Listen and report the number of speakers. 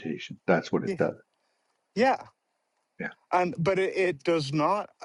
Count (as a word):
two